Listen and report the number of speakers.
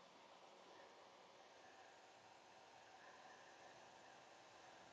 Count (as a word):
zero